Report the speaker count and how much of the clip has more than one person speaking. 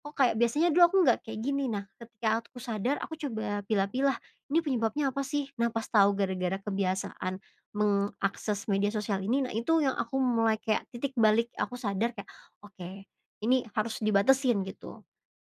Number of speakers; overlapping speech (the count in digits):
1, no overlap